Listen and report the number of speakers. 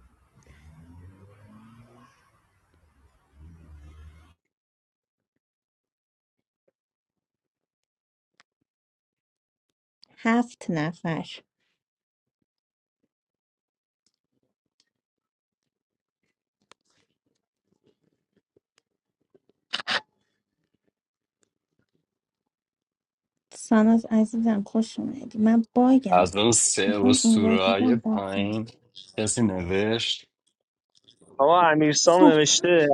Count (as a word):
three